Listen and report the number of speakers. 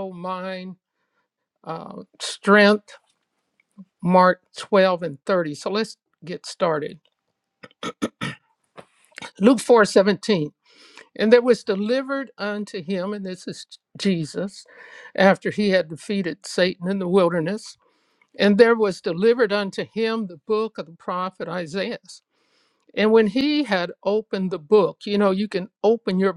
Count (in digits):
1